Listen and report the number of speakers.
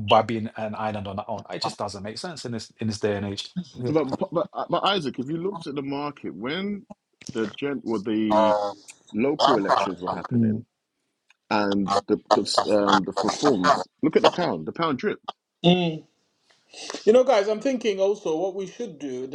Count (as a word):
three